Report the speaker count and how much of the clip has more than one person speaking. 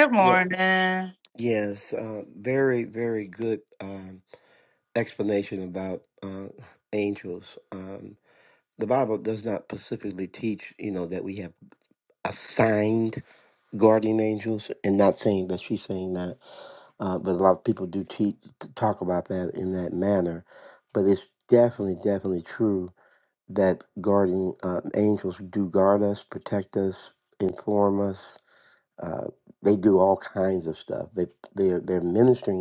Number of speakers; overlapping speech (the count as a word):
two, about 1%